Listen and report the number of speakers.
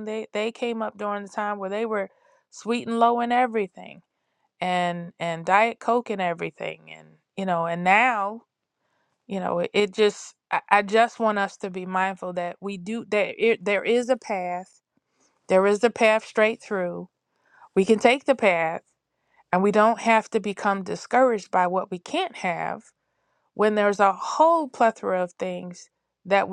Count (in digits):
1